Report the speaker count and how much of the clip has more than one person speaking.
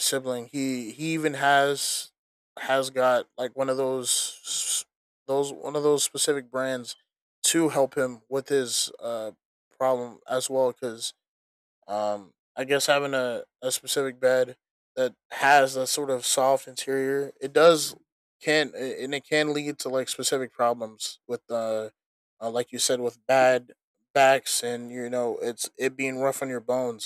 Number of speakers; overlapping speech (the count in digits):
1, no overlap